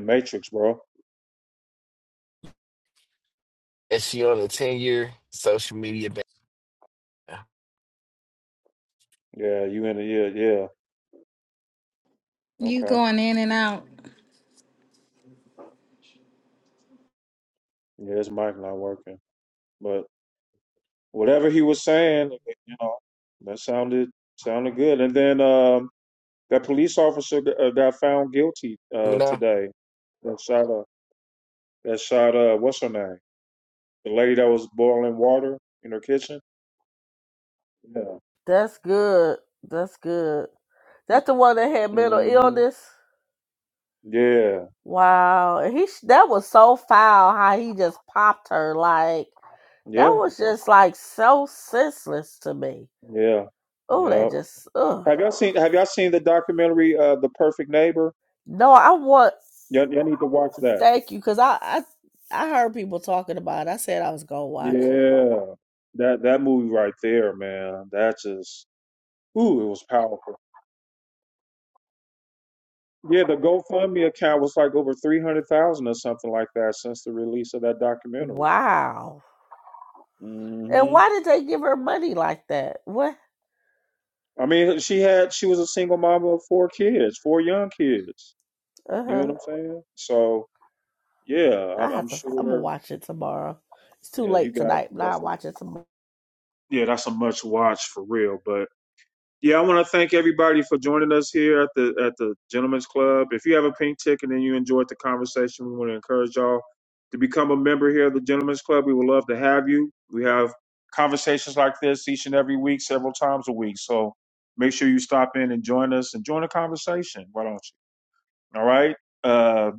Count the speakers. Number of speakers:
4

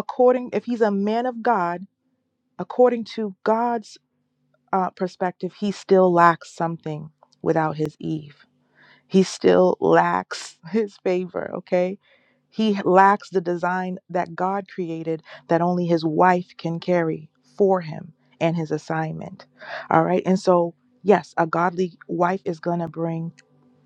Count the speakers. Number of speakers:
1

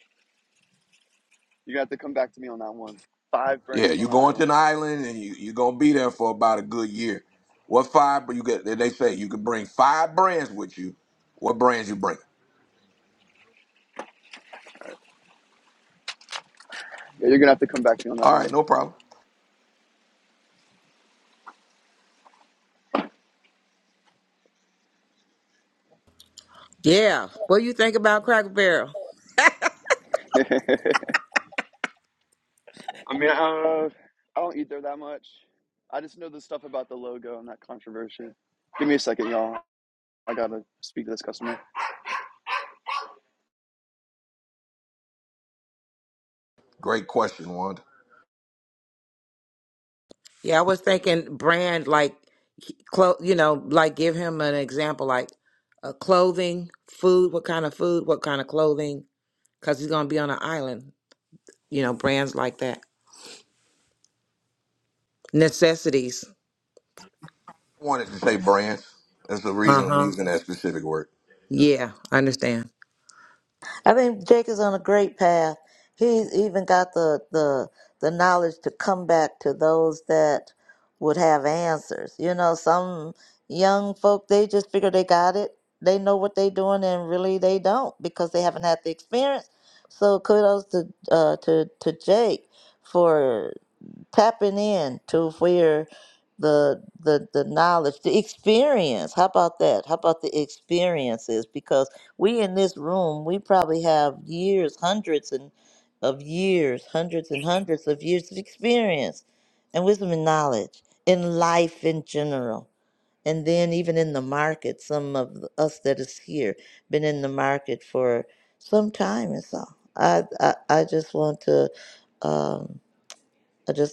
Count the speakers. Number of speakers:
4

